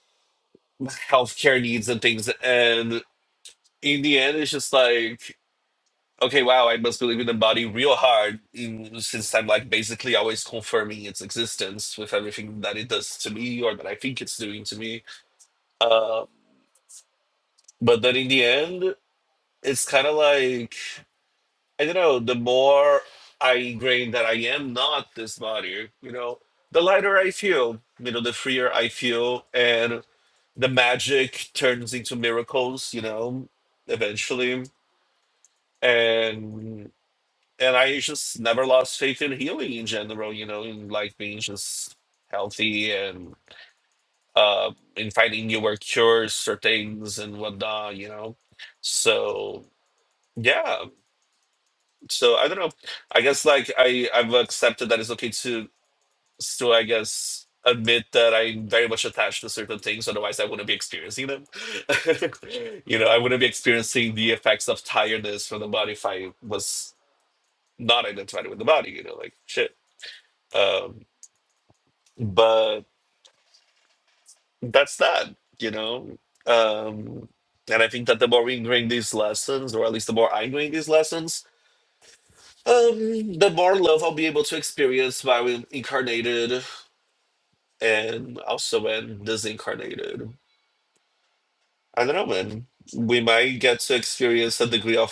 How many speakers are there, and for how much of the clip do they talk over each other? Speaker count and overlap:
1, no overlap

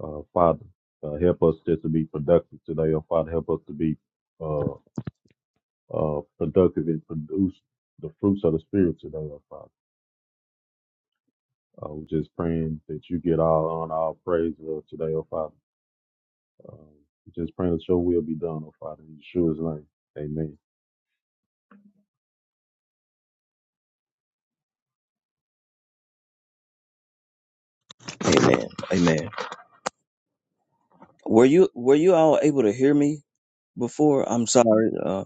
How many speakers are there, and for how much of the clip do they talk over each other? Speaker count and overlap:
2, no overlap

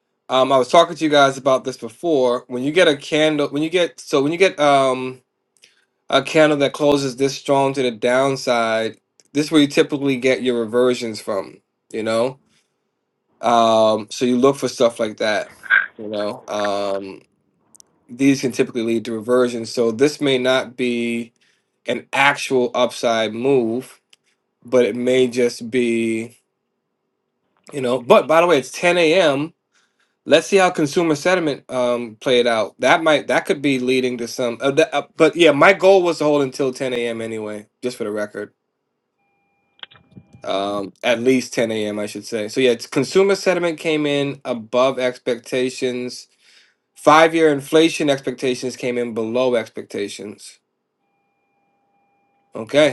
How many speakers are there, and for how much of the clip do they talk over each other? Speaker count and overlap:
1, no overlap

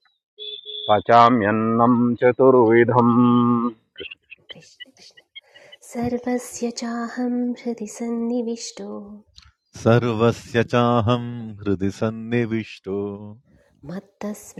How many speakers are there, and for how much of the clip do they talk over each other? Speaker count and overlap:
3, no overlap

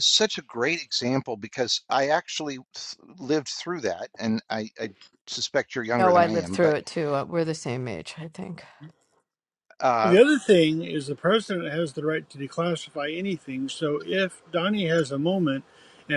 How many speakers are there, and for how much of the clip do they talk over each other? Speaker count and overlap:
3, about 6%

